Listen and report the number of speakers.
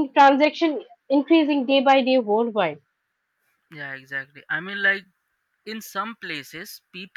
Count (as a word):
two